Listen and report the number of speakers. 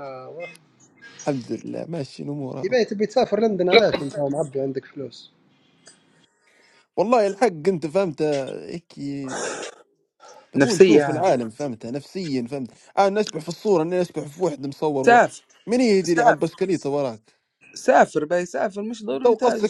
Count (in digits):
3